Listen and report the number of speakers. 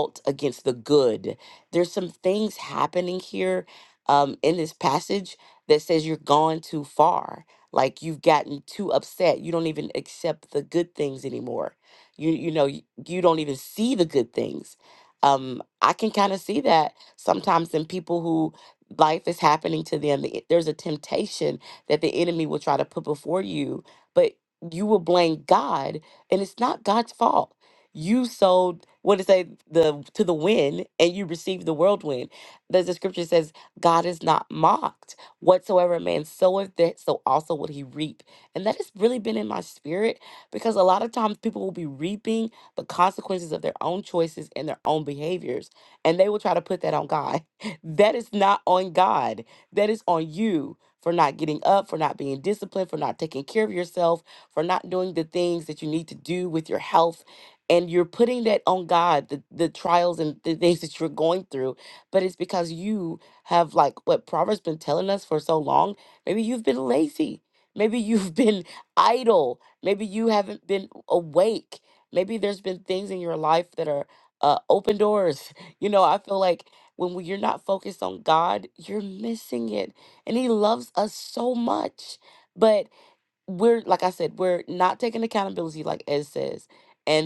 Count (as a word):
one